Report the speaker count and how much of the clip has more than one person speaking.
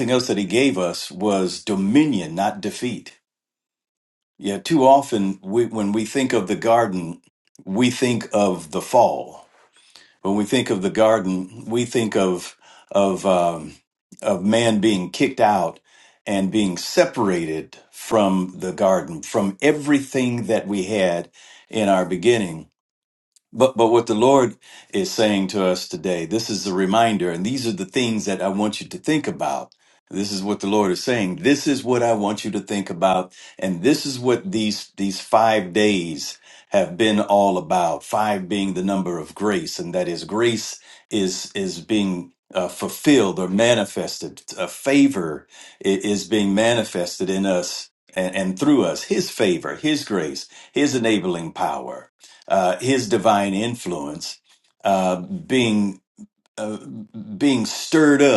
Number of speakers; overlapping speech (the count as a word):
one, no overlap